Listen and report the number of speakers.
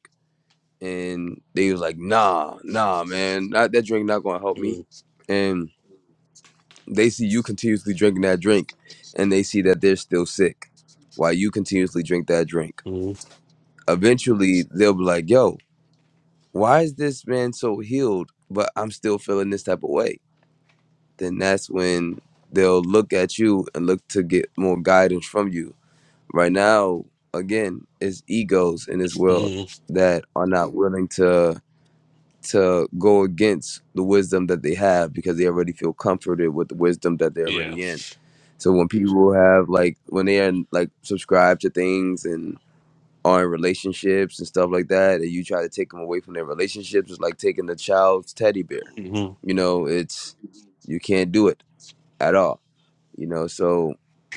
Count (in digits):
2